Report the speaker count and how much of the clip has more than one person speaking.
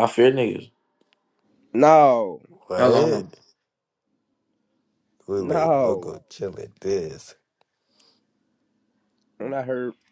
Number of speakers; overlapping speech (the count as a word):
three, about 12%